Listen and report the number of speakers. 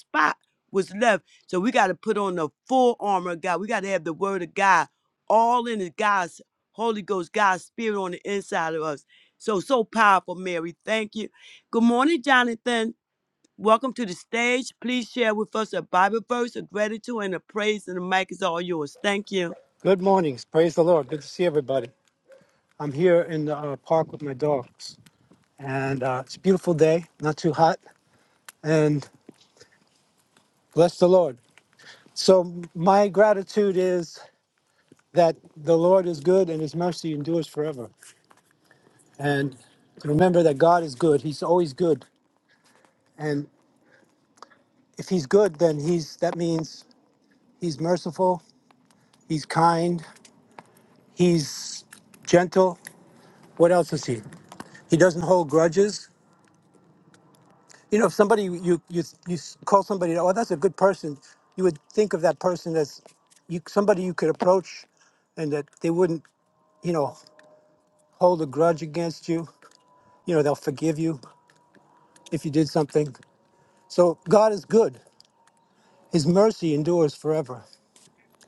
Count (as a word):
two